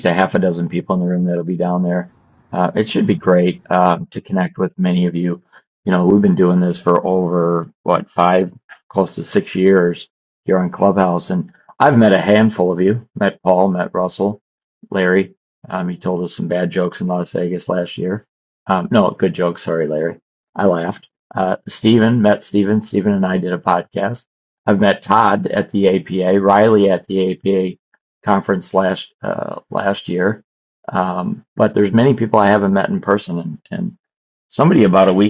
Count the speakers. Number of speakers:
1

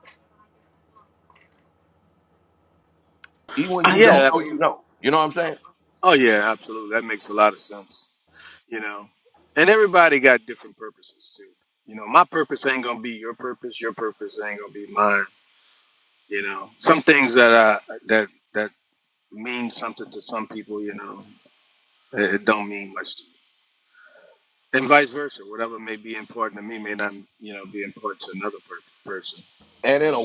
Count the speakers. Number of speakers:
2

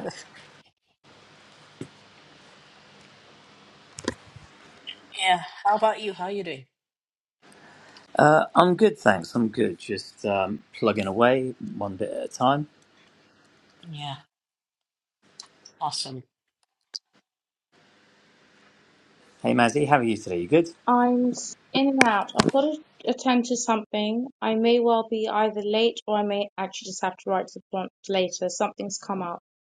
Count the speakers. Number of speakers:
3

